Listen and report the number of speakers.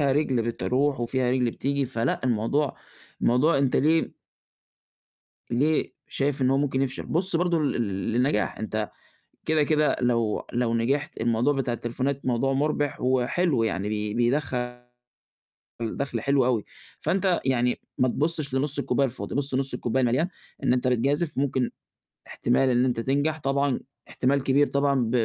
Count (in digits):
1